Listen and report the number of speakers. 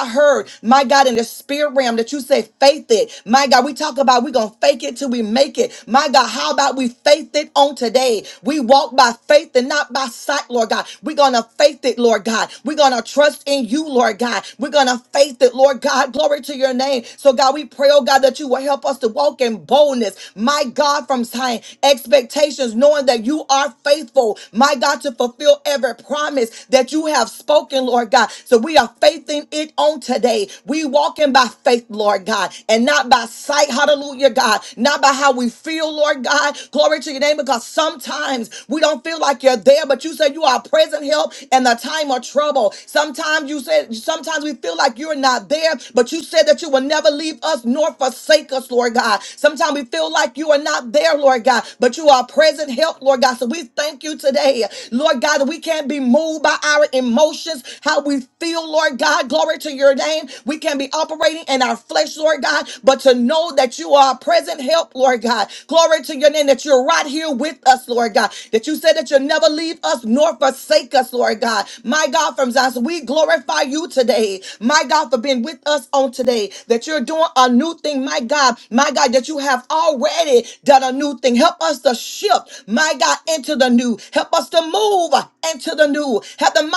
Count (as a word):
one